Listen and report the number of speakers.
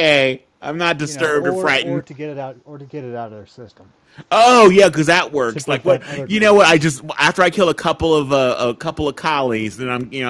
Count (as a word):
two